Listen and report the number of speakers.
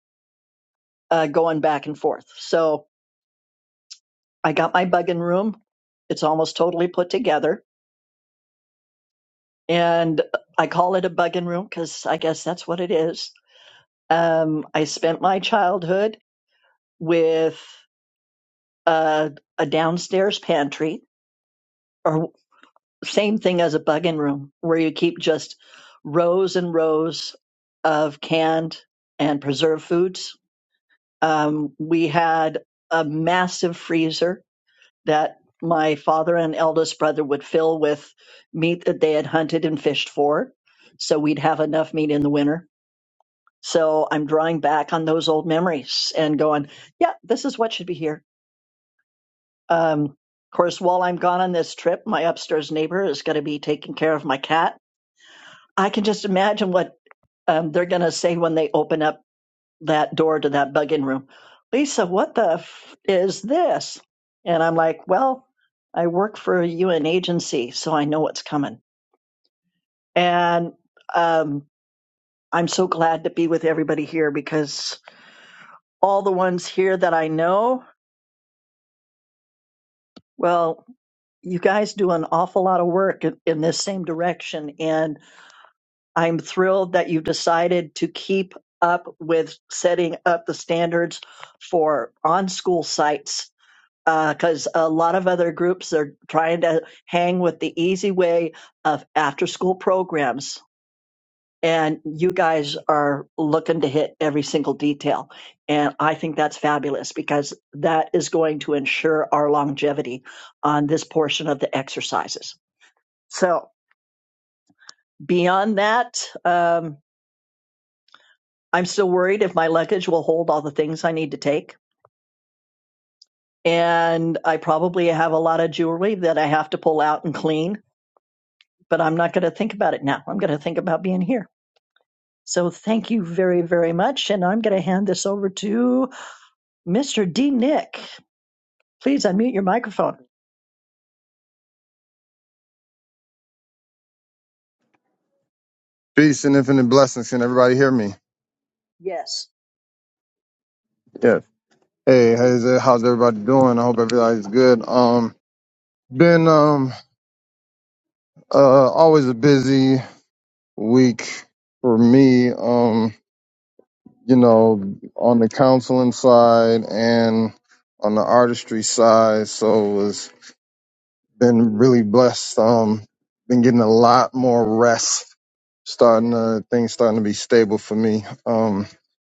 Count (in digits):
2